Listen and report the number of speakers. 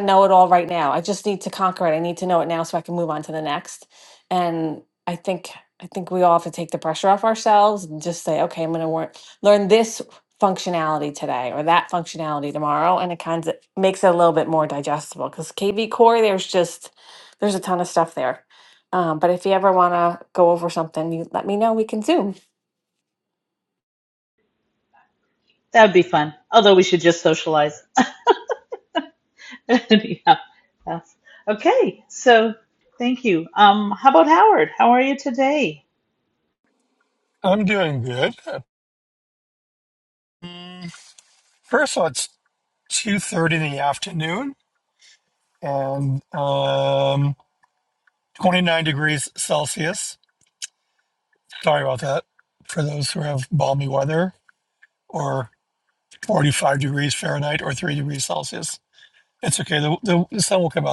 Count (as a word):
three